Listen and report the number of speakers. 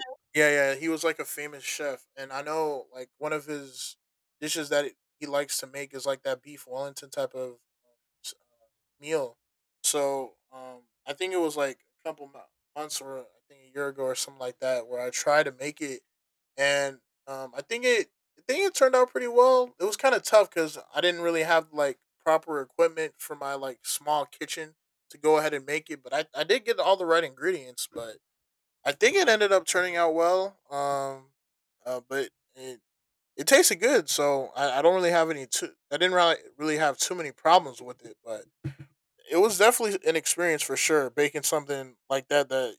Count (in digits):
1